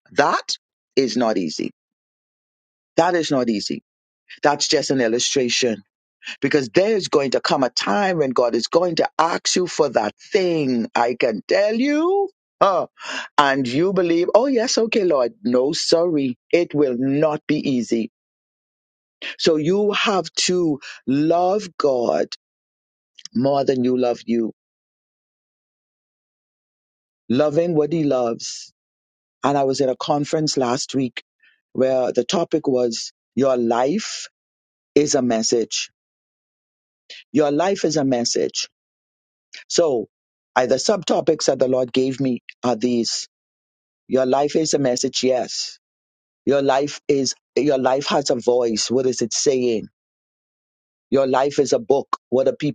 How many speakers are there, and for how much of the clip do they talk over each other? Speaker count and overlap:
1, no overlap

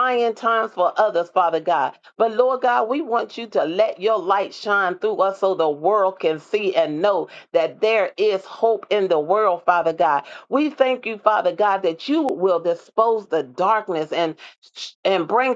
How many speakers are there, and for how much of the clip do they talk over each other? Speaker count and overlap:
1, no overlap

